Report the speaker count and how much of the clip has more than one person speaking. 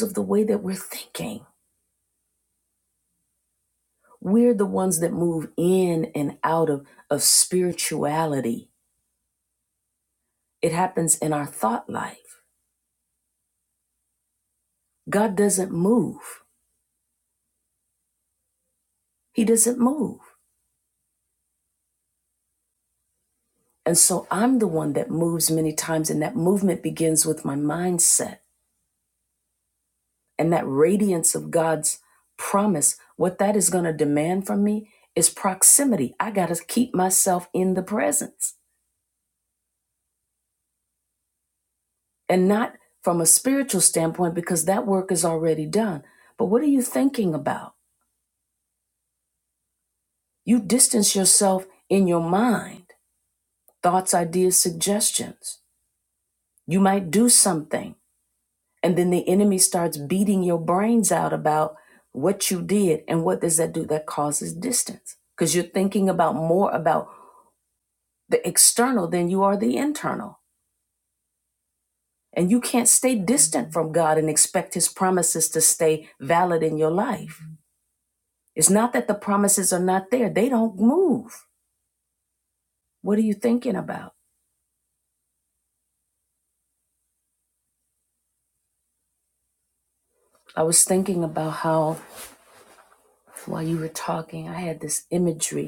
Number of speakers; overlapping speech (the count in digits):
1, no overlap